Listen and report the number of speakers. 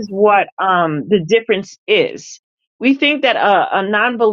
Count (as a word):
one